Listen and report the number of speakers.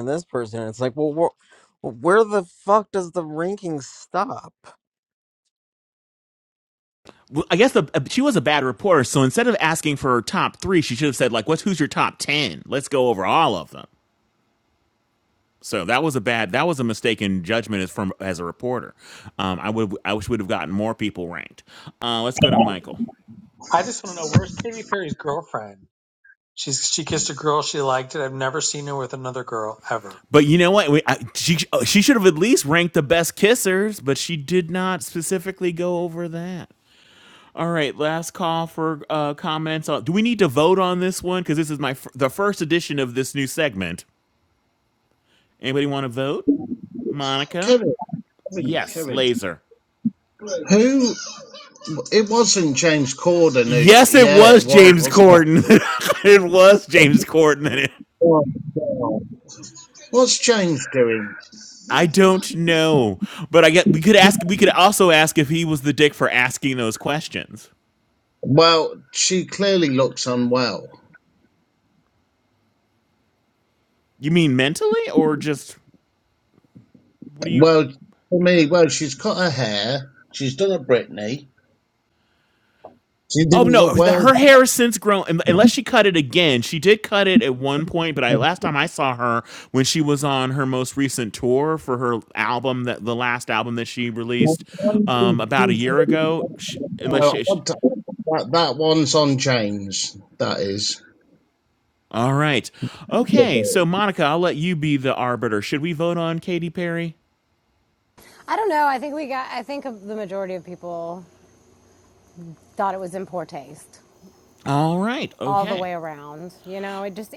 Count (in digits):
5